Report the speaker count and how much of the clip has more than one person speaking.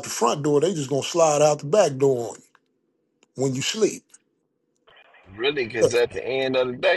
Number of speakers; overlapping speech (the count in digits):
2, about 2%